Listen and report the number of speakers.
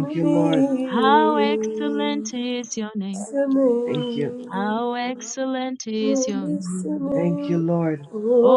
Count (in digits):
3